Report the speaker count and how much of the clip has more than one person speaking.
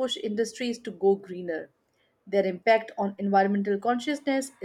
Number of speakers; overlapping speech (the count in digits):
1, no overlap